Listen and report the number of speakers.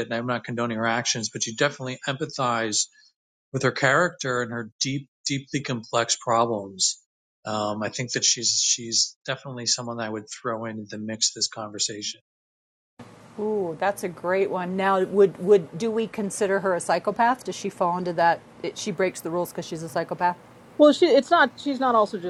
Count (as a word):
three